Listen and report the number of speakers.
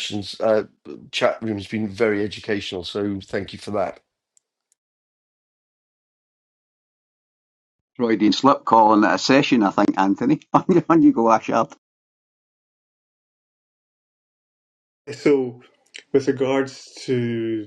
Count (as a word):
three